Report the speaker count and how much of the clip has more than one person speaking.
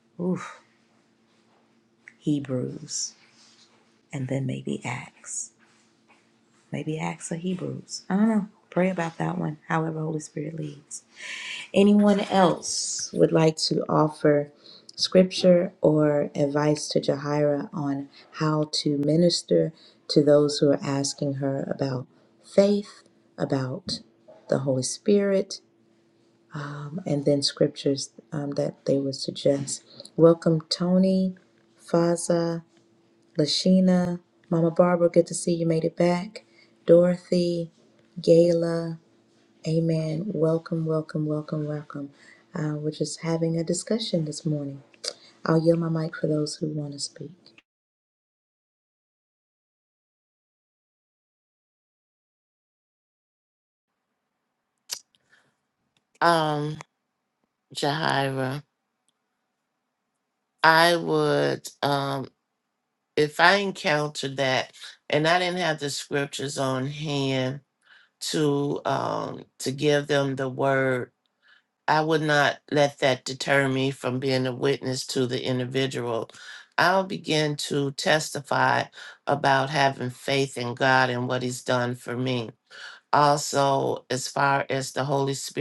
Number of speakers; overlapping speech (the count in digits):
2, no overlap